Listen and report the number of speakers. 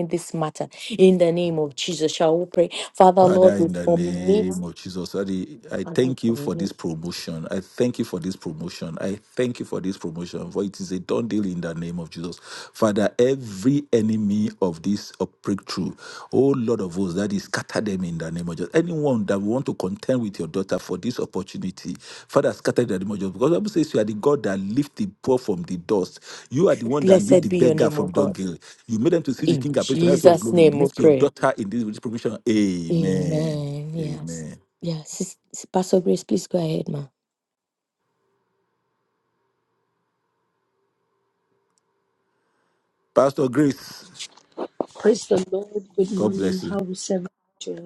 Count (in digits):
3